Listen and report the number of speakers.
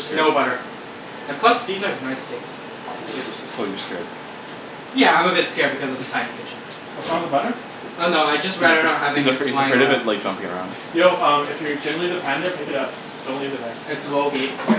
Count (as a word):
three